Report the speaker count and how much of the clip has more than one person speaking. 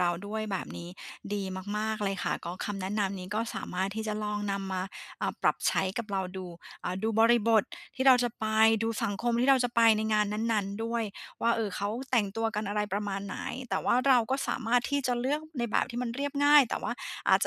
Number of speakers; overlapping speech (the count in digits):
1, no overlap